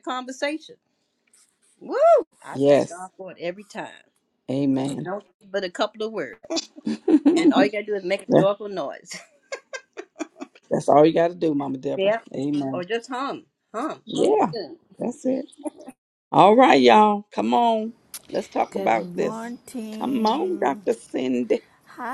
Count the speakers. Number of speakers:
3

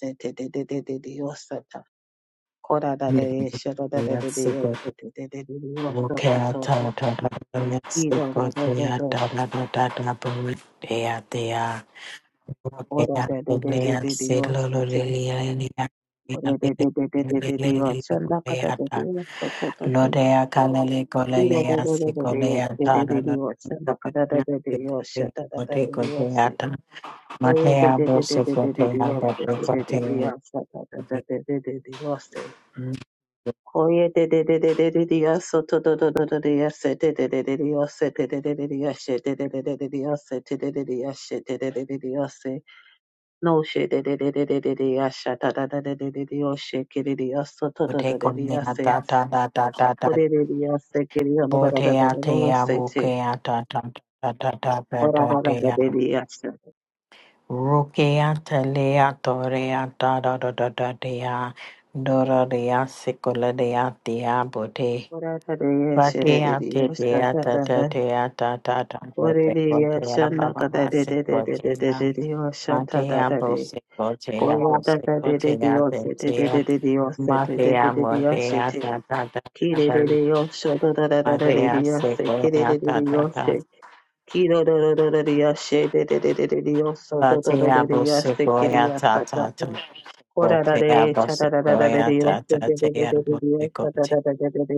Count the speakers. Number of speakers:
2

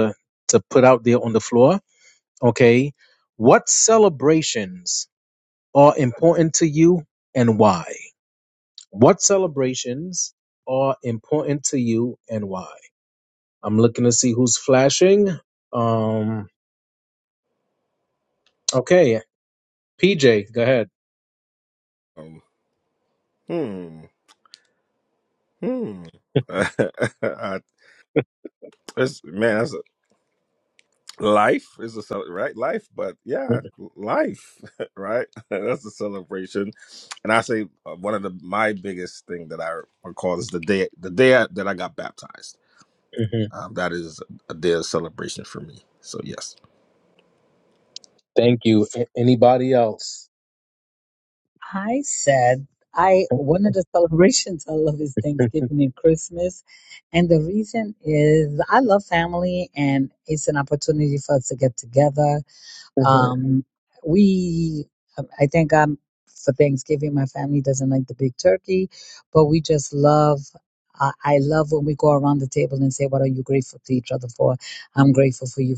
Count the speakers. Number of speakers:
3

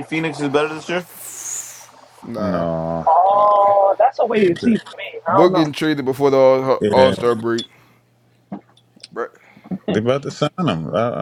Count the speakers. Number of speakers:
4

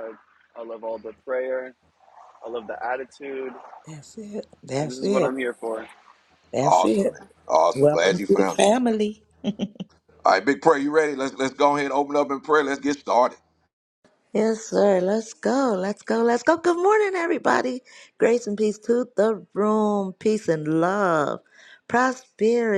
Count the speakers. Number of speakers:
4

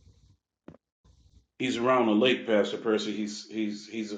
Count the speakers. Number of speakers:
1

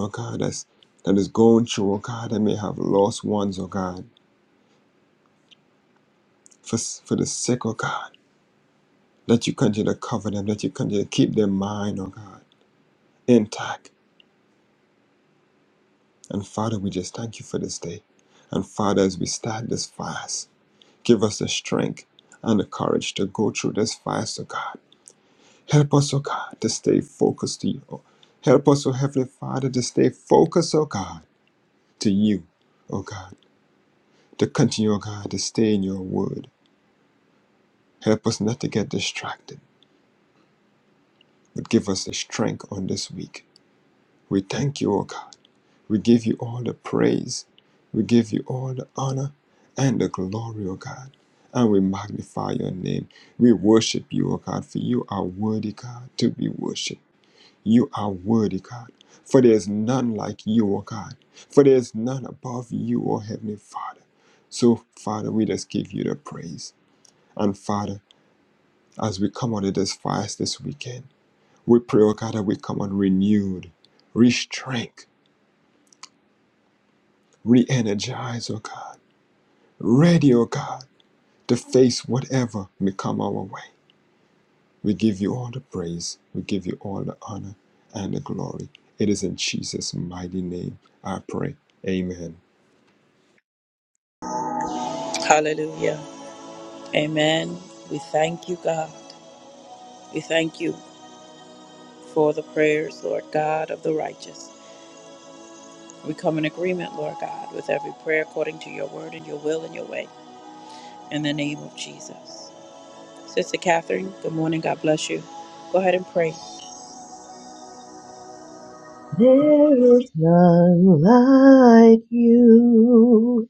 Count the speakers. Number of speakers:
3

